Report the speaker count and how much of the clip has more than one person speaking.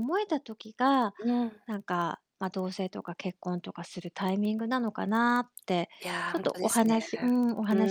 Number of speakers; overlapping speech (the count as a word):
two, about 11%